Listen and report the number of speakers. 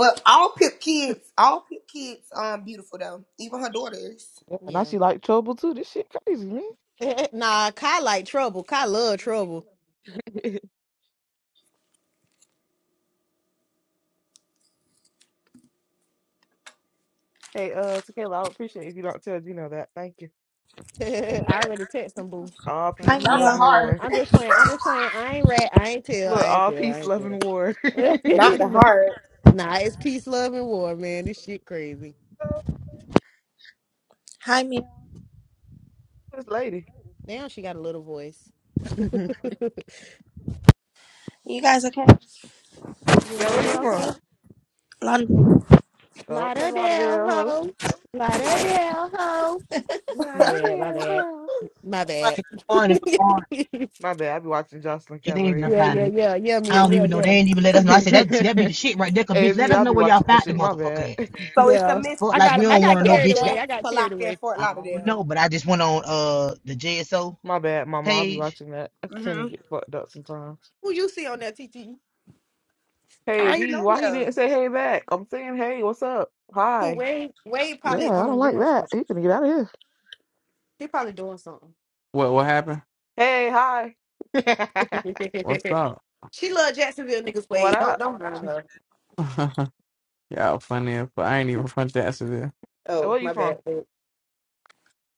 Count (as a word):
six